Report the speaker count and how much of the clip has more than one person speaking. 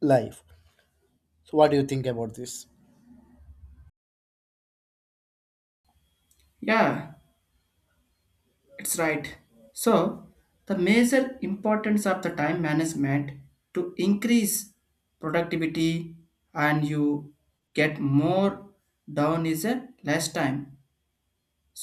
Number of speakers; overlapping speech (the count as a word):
two, no overlap